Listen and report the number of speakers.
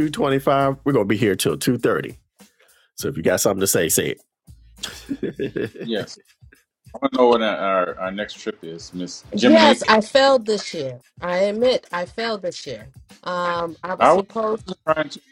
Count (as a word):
three